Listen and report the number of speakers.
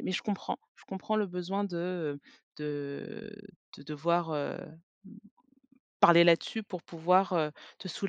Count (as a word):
one